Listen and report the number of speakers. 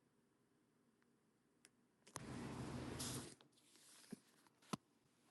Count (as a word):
zero